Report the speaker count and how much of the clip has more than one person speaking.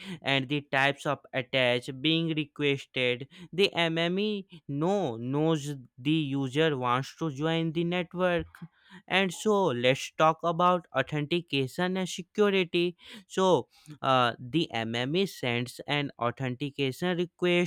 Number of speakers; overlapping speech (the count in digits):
1, no overlap